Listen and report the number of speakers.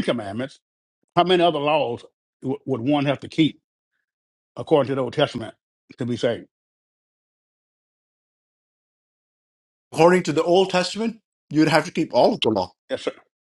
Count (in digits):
2